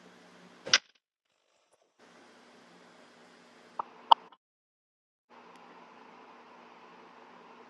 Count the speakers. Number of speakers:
0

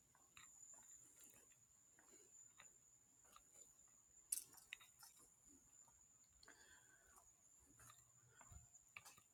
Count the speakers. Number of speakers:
0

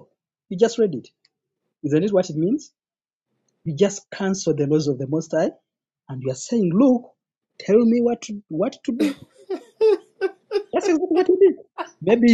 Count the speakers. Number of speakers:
1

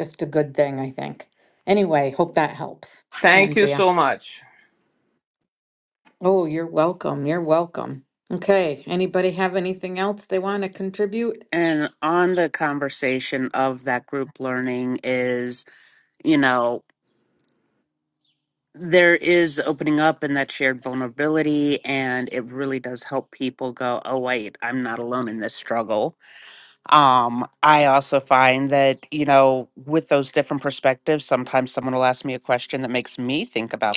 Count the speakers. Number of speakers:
3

